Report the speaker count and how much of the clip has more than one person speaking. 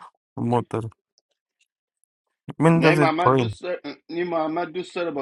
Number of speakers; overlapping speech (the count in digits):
2, about 14%